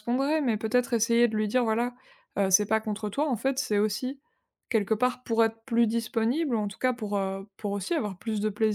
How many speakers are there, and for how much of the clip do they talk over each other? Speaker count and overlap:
1, no overlap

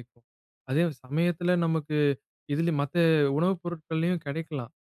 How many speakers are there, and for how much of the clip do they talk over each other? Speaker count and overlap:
1, no overlap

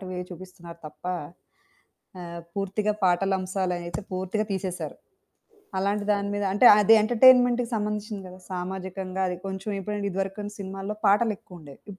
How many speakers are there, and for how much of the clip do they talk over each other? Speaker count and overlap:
1, no overlap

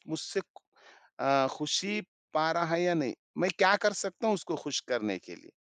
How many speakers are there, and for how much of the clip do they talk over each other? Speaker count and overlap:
1, no overlap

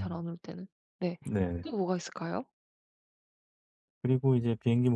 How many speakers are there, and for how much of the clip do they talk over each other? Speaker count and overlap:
2, about 2%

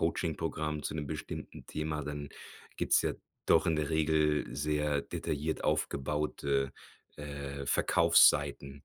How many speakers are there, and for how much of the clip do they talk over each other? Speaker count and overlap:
1, no overlap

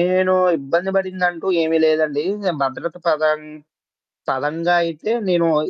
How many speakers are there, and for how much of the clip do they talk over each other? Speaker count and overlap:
1, no overlap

